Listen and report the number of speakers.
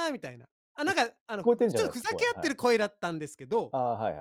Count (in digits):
2